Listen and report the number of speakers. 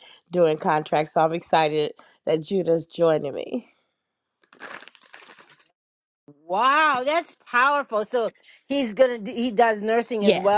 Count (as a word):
two